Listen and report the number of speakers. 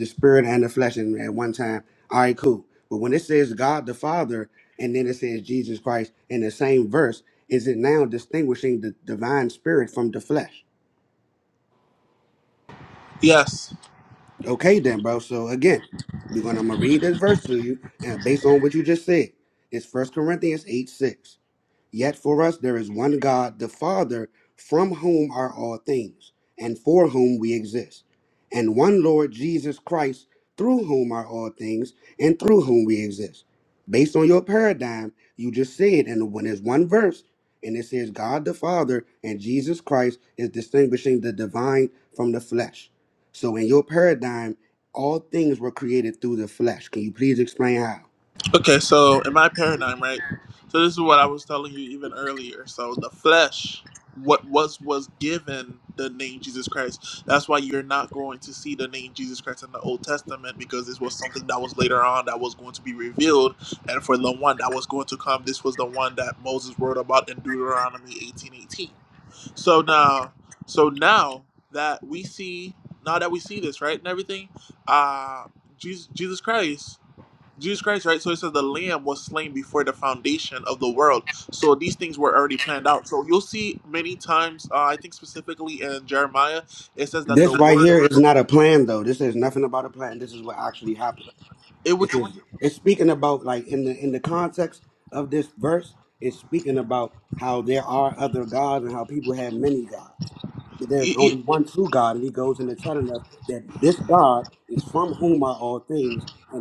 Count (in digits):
2